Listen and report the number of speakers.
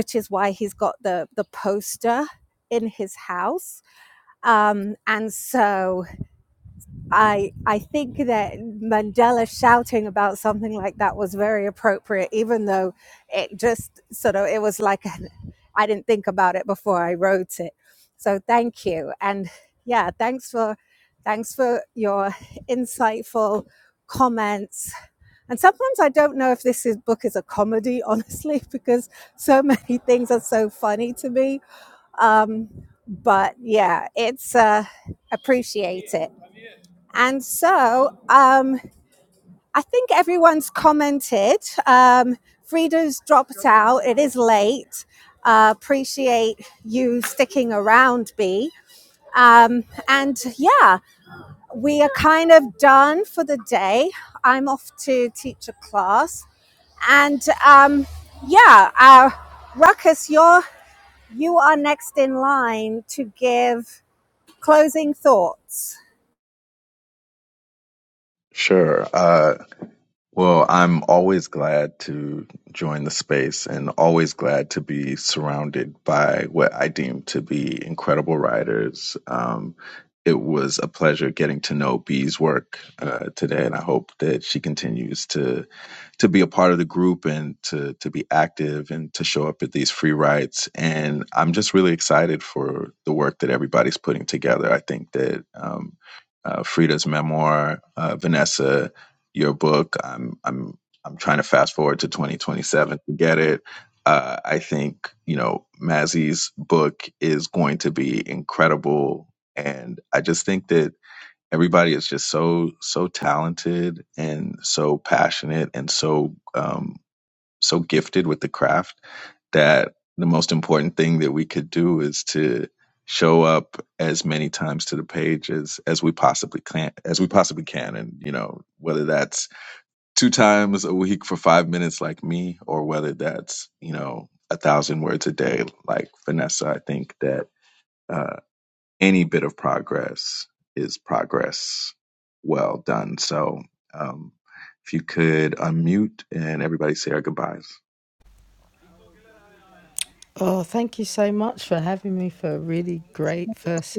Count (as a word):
three